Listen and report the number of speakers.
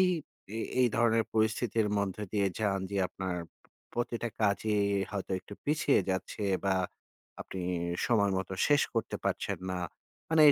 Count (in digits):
1